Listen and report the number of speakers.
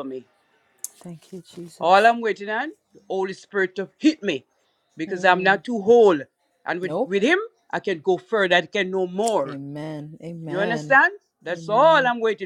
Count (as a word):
two